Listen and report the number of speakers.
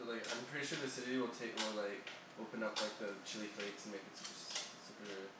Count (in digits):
1